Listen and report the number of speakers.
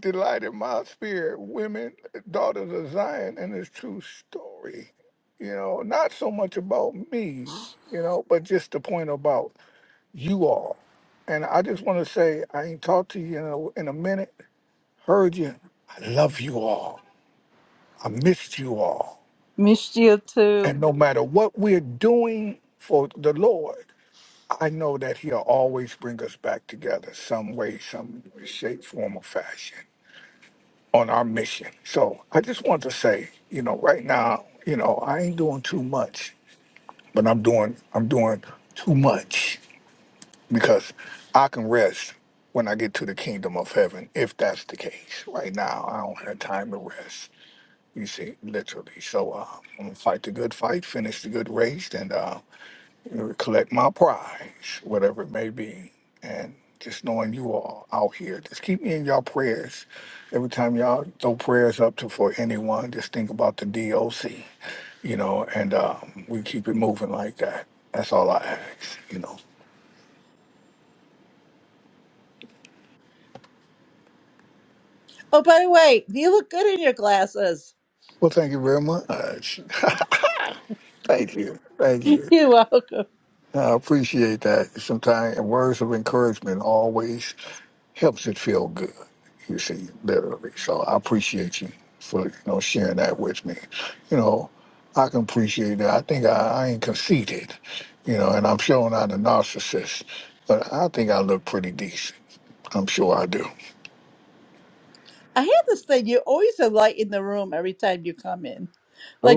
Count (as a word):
two